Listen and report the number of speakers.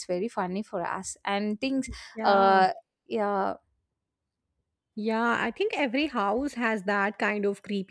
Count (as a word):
two